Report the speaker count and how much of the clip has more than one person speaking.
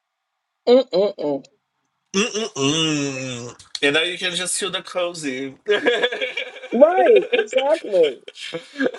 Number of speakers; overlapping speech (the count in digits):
2, no overlap